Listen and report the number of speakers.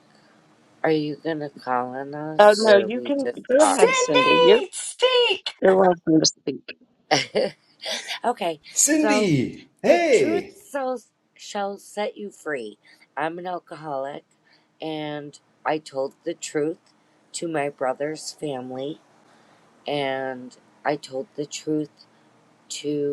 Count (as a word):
four